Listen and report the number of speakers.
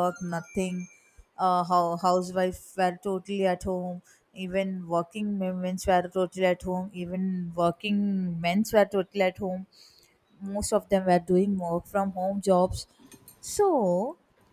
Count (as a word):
one